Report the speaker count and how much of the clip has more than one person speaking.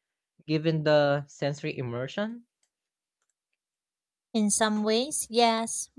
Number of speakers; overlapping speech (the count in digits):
2, no overlap